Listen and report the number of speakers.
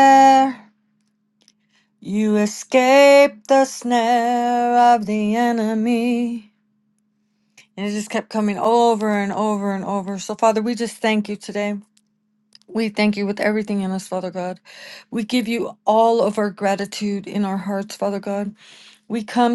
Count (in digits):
1